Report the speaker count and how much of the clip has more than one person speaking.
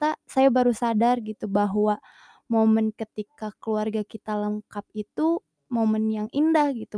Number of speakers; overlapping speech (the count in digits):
1, no overlap